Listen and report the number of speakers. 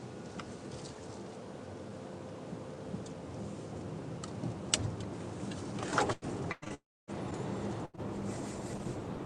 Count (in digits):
0